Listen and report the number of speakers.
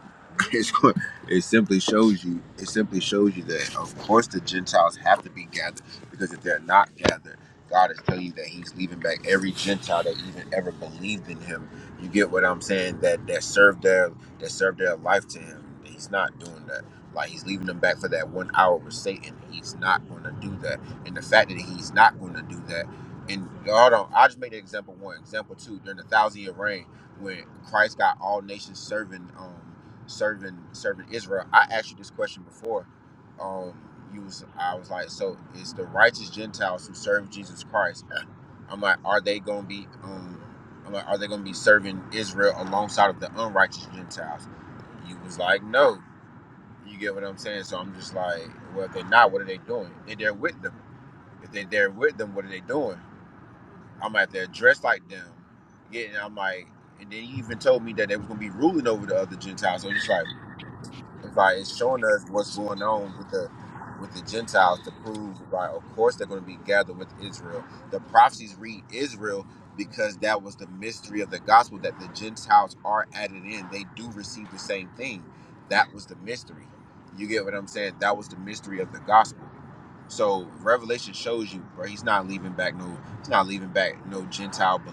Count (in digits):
1